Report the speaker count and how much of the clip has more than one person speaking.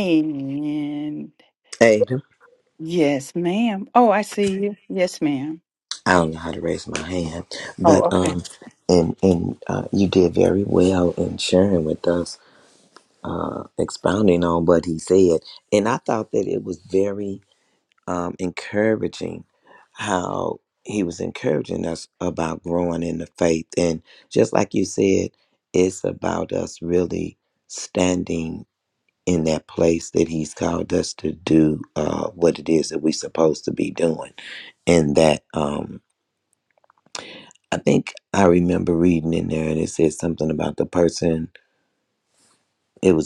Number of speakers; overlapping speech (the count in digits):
2, about 1%